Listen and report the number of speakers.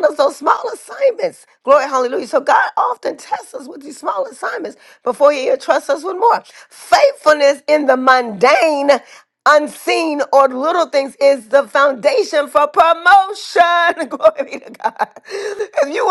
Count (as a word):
one